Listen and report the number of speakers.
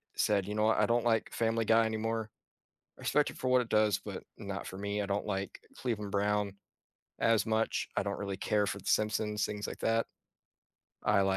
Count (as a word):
one